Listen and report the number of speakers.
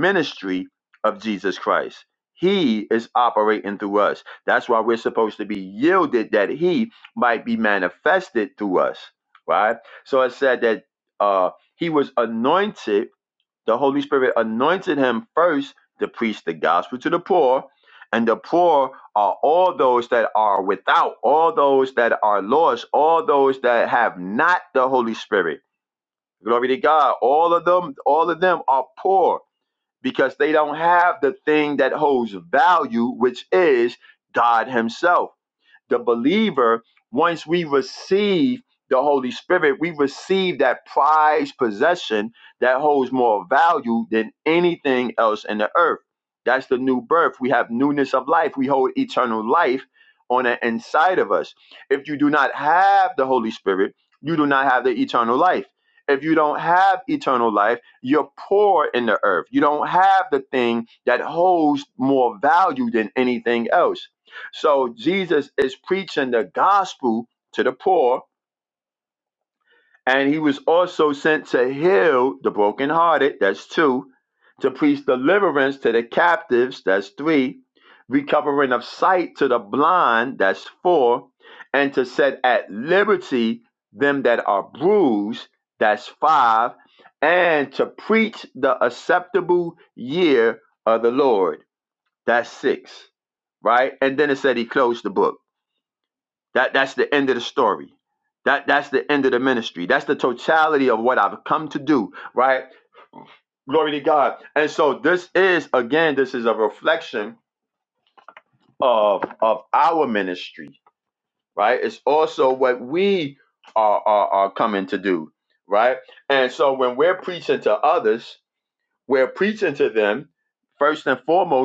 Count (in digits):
1